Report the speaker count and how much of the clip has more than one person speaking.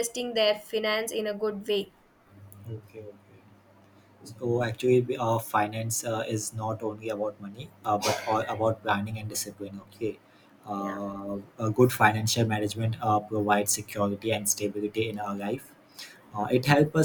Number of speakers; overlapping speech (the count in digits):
2, about 1%